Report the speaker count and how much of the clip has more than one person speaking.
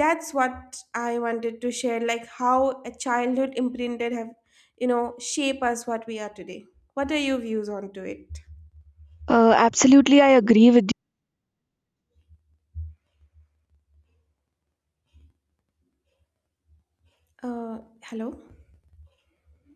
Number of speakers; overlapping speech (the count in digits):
2, no overlap